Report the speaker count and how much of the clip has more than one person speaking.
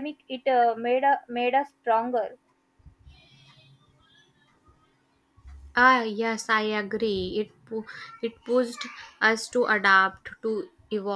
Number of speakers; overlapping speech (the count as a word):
two, no overlap